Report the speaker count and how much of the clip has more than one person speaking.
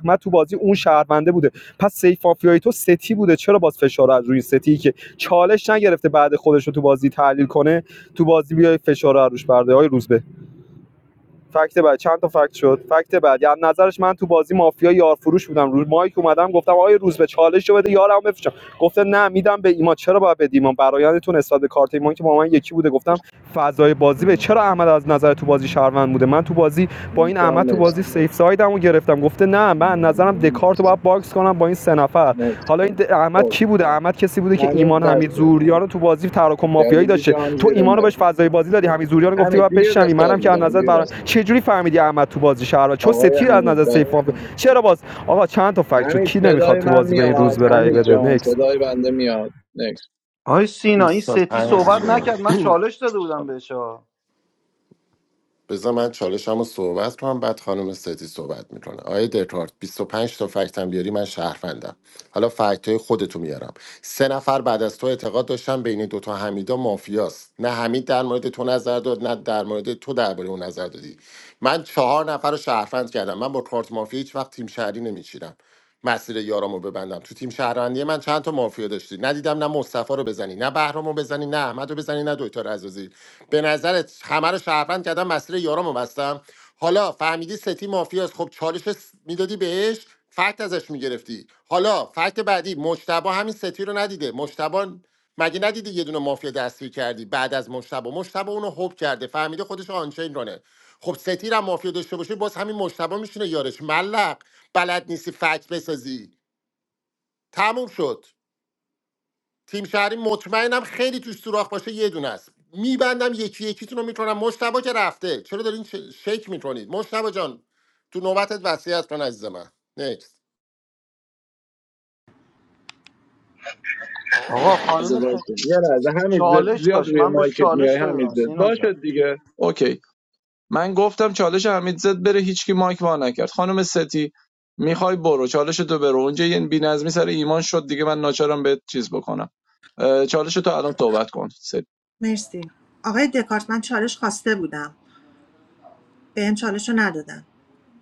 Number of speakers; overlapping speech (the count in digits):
5, about 9%